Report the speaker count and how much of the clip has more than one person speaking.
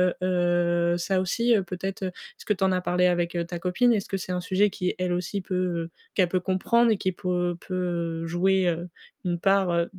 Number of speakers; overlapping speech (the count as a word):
one, no overlap